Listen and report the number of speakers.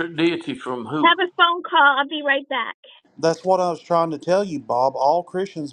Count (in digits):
3